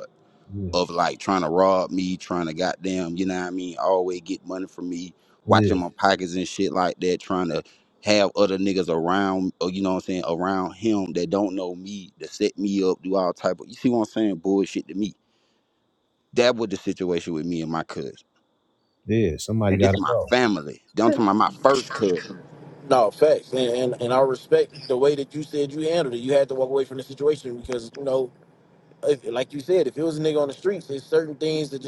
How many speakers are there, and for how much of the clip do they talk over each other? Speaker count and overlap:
3, about 3%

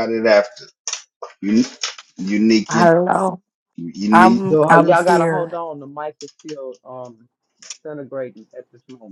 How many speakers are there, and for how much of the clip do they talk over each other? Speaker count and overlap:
3, about 17%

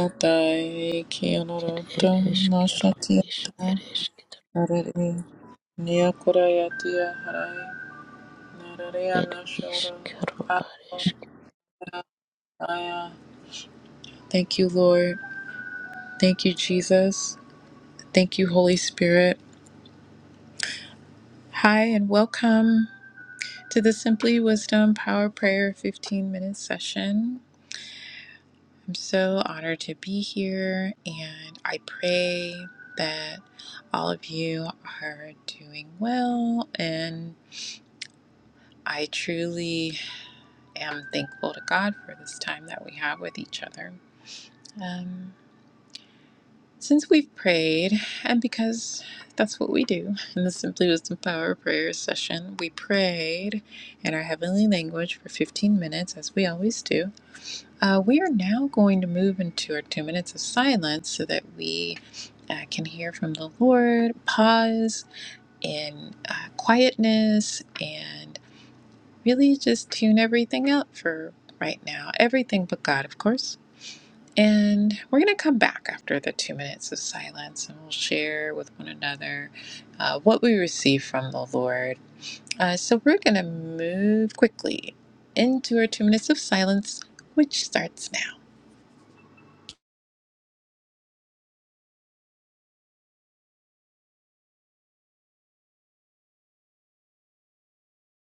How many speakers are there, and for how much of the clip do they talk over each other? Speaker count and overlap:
2, about 3%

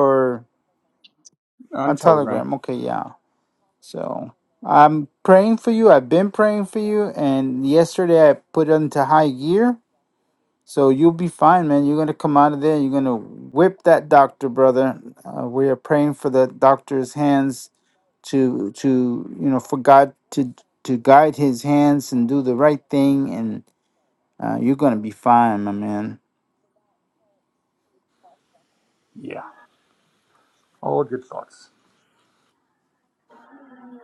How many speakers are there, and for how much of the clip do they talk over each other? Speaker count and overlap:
2, about 2%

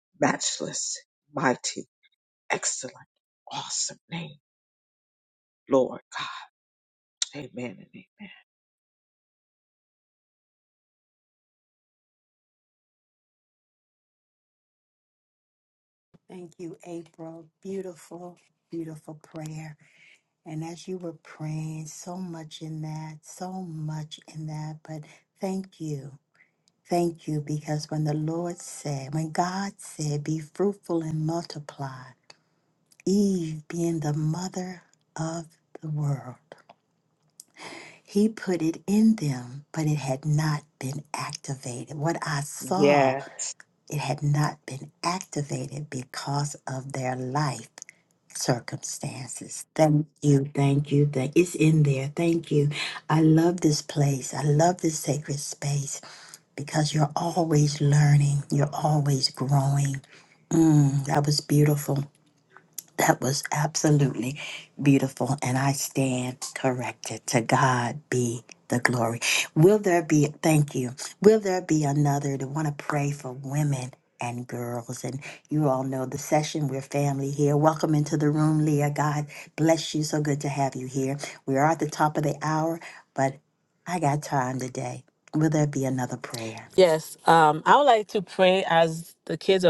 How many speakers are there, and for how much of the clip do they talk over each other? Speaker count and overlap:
3, about 1%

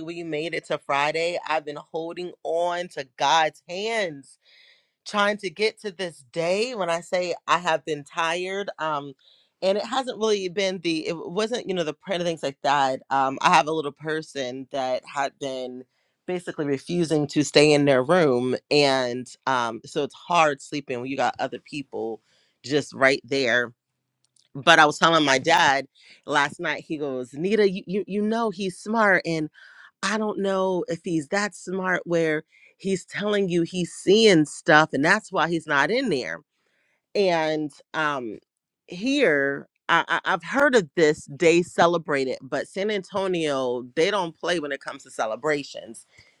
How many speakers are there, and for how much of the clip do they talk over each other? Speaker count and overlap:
1, no overlap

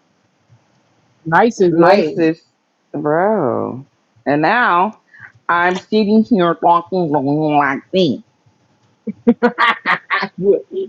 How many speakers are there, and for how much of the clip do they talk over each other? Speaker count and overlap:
2, about 4%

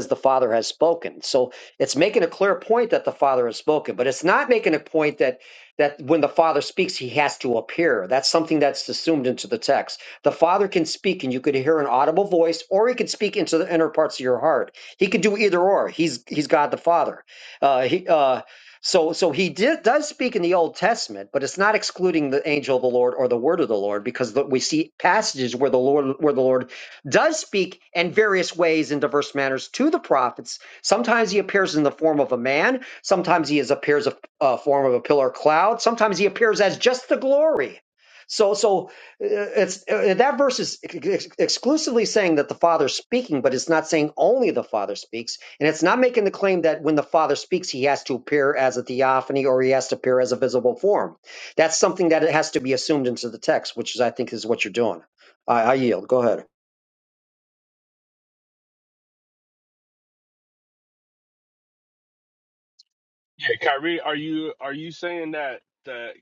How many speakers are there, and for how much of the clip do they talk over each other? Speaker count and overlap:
2, no overlap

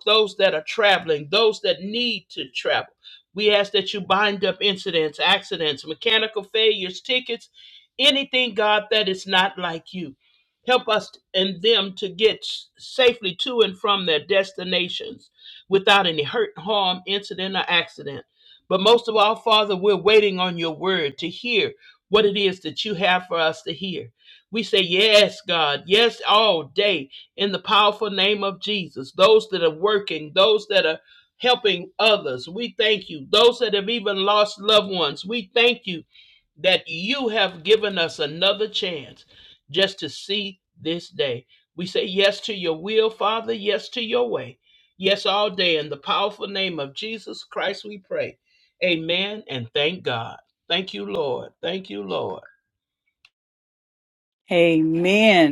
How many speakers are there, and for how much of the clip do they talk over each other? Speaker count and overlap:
2, no overlap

